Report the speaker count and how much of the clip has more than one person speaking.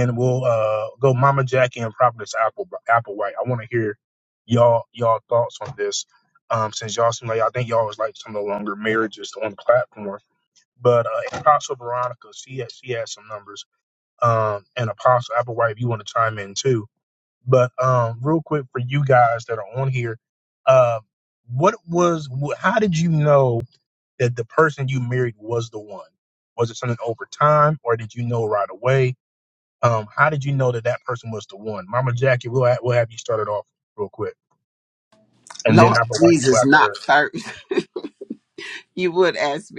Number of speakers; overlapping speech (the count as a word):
two, about 3%